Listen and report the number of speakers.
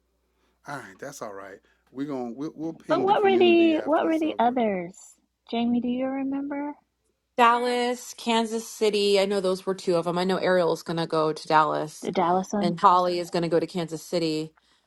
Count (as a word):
three